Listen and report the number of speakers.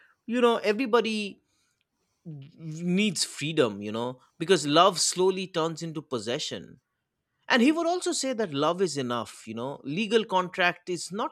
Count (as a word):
one